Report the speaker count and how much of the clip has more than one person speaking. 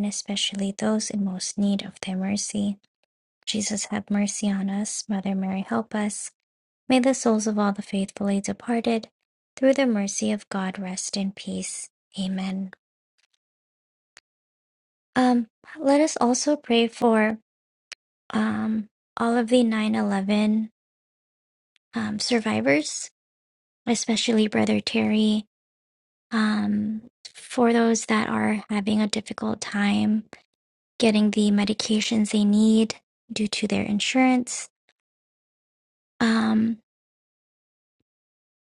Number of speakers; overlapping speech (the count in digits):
1, no overlap